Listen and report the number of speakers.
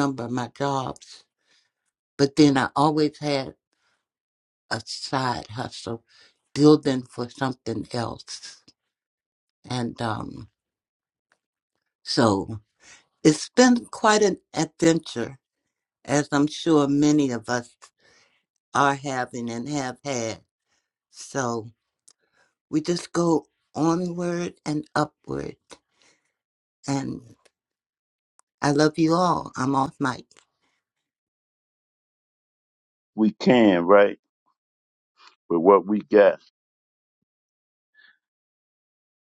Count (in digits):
2